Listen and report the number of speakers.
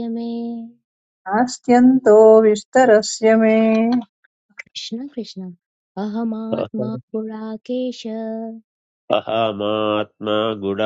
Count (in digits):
3